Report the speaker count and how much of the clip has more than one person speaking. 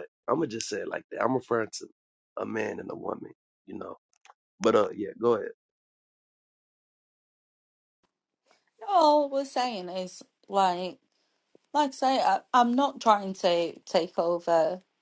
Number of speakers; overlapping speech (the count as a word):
two, no overlap